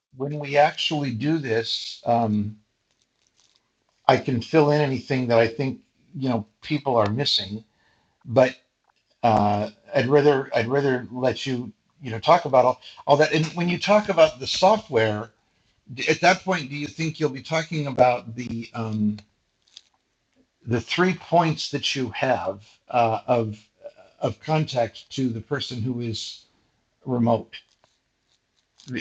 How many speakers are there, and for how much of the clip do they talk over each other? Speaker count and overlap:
one, no overlap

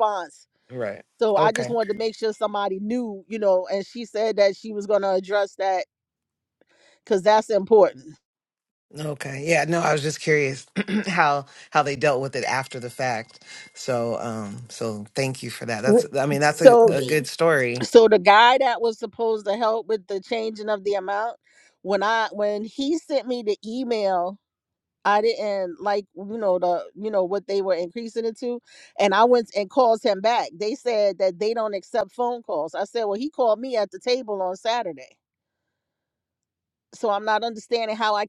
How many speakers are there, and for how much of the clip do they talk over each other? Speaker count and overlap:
two, about 3%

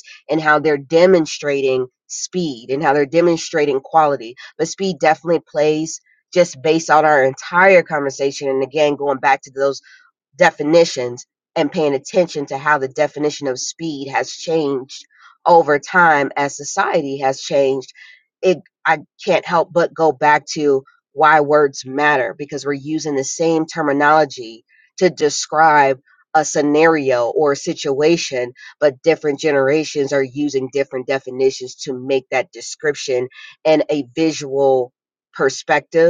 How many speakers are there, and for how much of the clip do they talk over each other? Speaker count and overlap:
one, no overlap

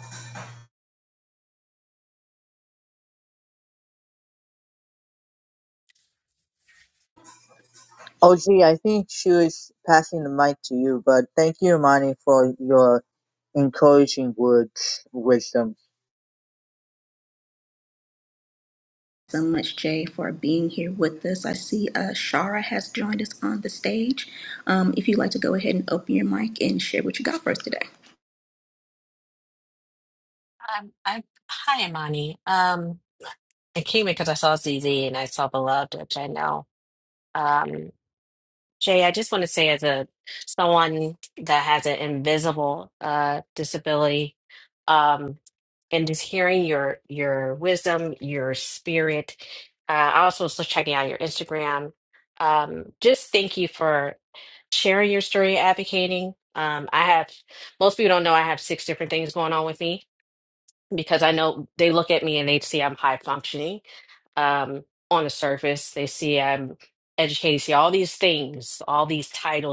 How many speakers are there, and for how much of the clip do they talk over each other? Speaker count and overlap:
three, no overlap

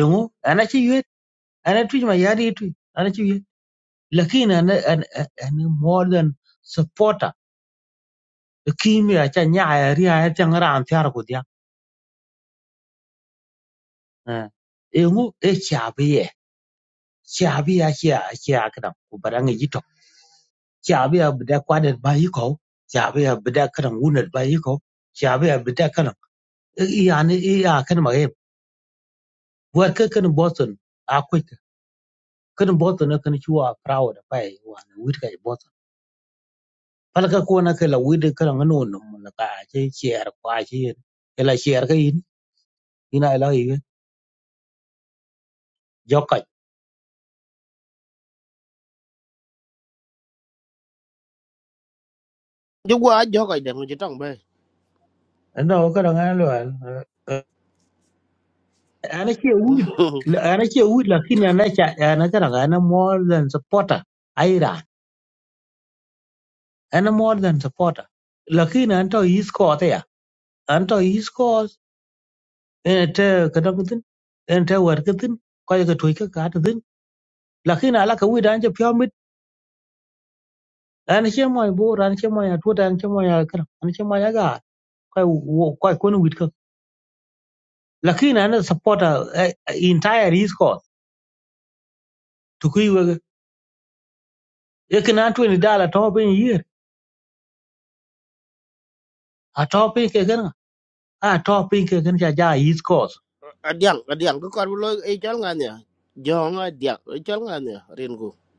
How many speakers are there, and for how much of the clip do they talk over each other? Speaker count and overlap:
two, no overlap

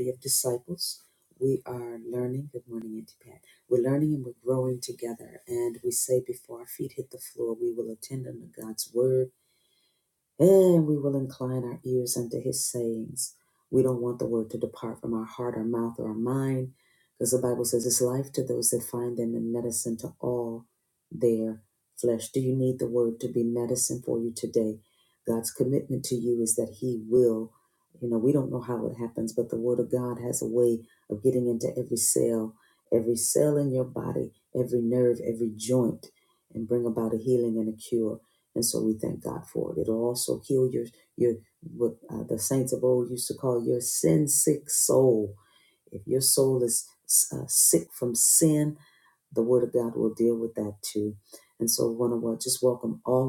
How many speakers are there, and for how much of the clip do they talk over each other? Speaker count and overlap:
one, no overlap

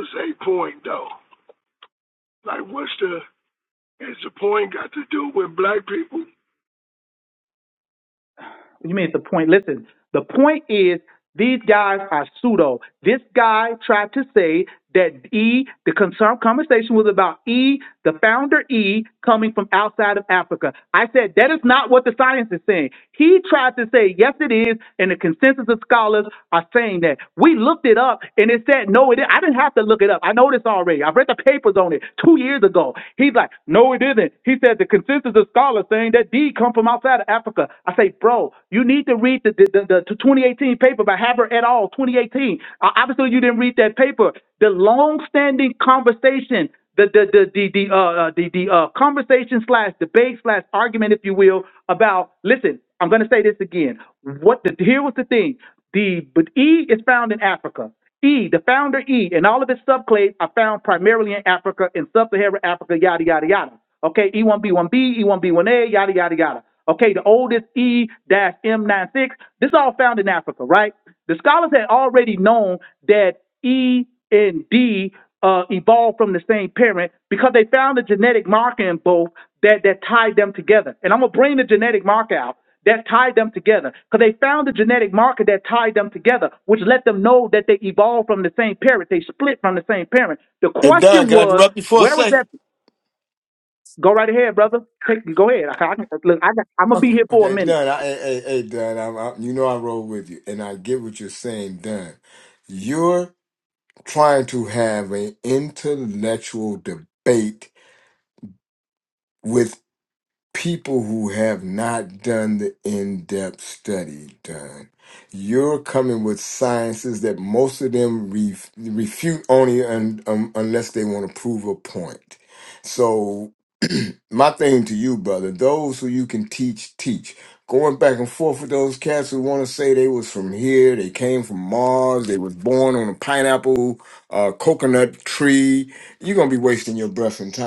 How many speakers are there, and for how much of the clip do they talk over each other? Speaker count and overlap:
three, about 2%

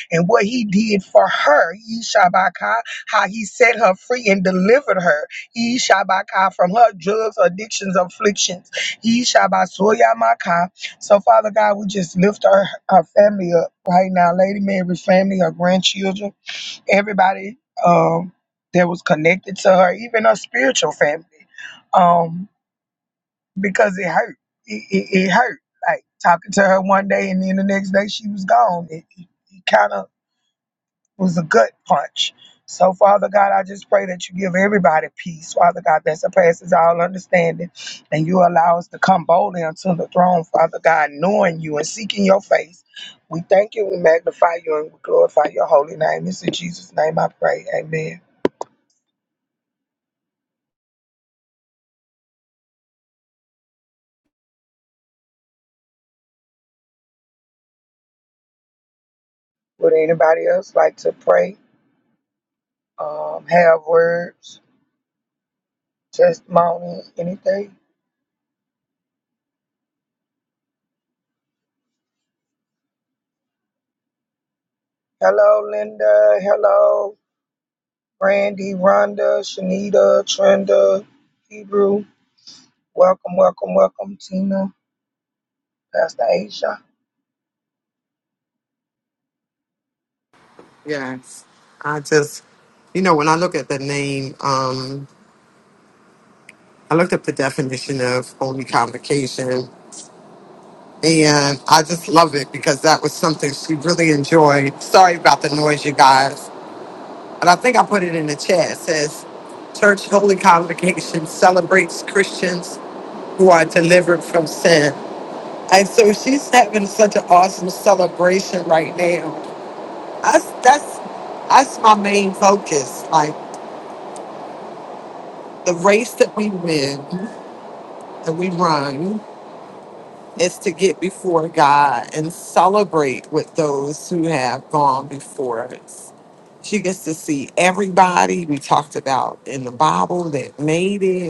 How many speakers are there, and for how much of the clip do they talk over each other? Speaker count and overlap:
two, no overlap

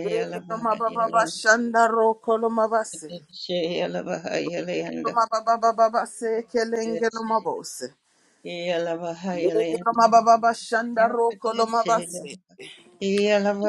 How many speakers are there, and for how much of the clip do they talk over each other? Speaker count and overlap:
two, about 18%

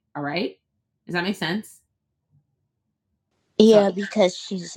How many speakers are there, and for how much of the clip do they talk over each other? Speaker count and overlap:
two, about 4%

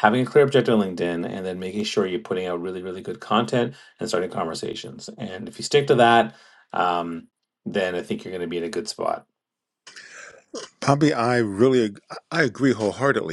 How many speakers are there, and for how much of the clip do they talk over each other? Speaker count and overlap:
two, no overlap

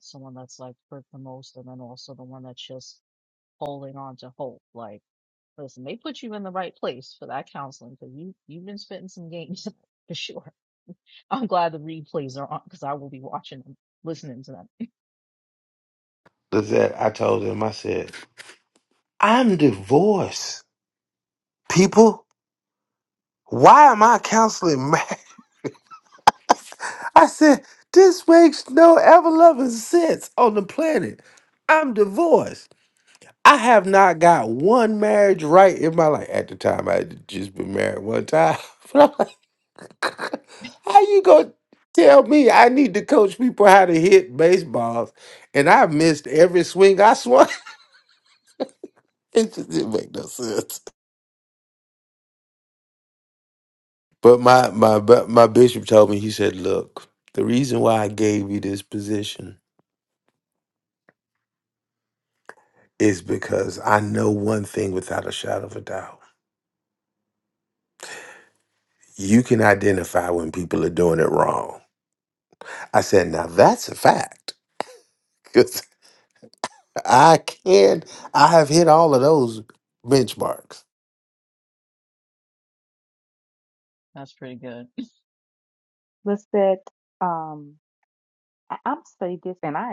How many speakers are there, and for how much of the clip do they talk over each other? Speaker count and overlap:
three, no overlap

